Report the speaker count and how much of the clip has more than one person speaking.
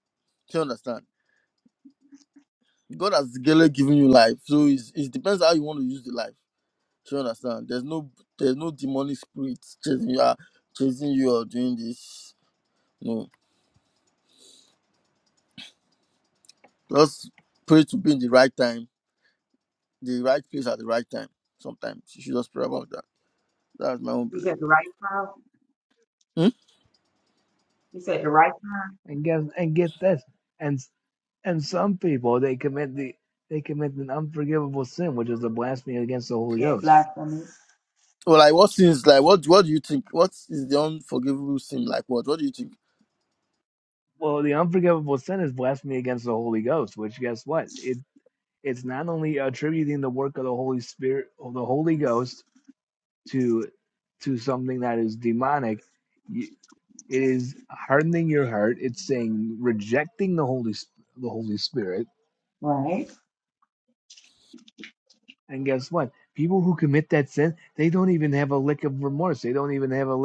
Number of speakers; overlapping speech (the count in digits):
3, about 1%